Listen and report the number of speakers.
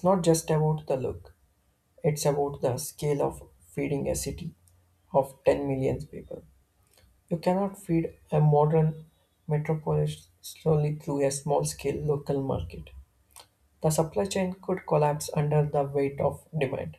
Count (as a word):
one